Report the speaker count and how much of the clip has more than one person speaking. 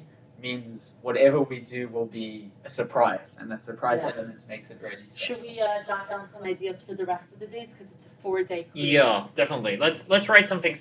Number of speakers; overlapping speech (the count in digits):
3, about 8%